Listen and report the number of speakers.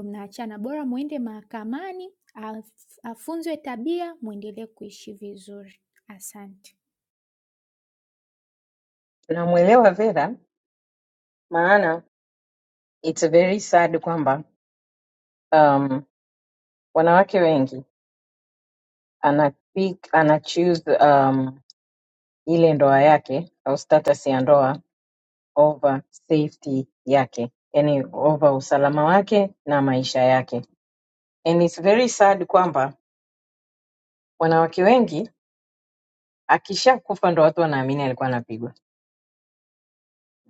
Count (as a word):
two